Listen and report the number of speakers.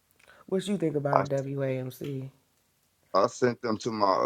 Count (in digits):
2